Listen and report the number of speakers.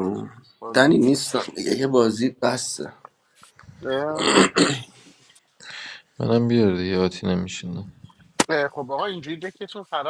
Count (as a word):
three